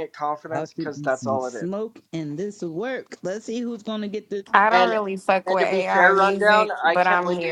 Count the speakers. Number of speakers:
3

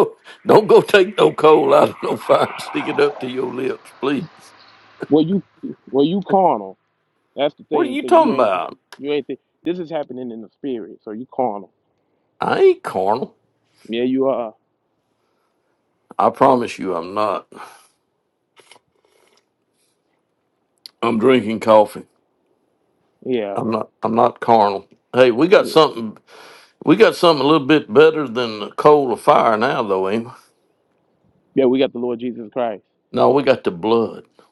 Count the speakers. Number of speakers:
2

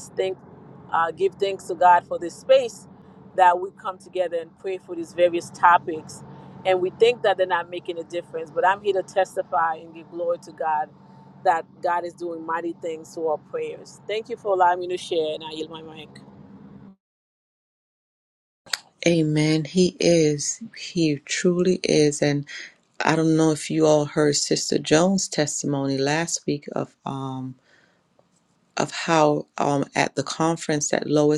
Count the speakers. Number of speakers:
2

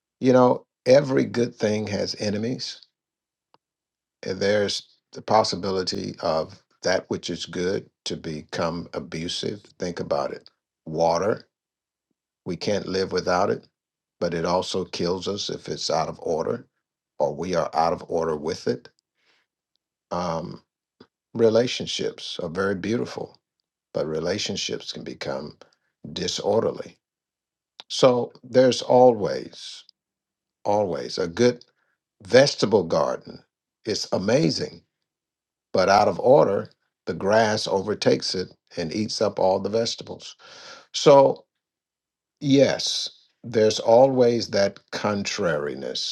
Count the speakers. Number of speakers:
1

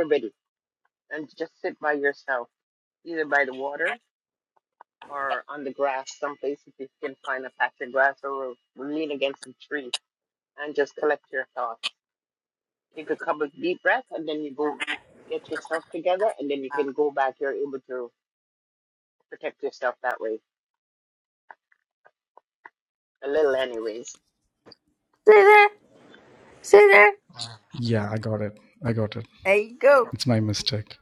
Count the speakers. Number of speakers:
3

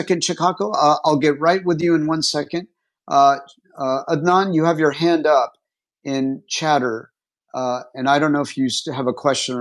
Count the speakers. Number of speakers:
1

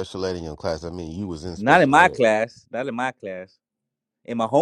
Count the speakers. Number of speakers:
2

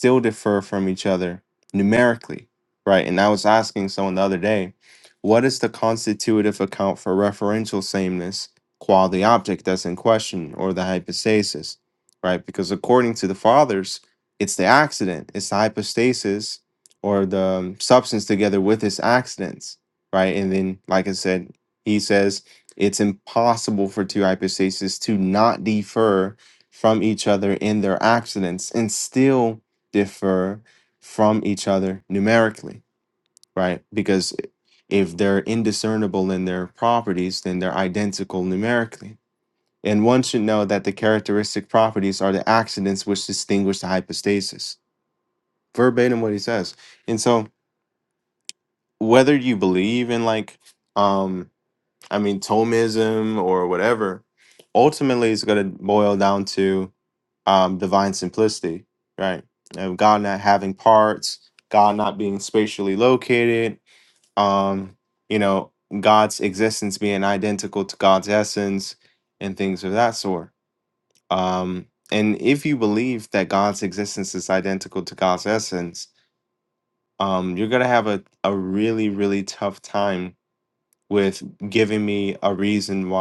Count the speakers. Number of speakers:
1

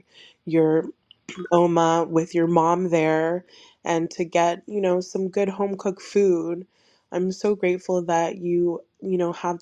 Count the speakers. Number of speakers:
1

